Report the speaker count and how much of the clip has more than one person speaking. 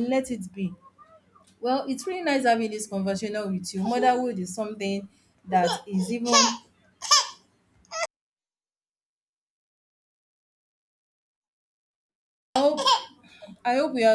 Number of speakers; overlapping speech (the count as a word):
one, no overlap